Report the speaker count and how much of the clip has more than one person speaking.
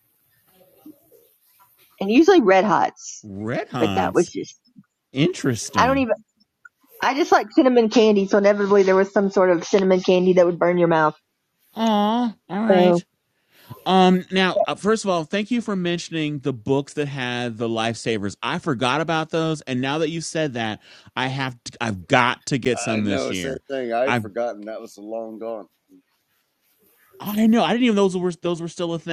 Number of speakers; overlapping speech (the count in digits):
3, about 6%